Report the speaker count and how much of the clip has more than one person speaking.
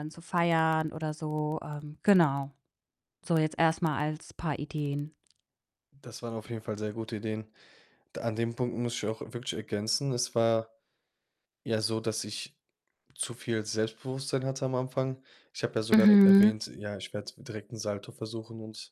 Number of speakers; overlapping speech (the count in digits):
2, about 3%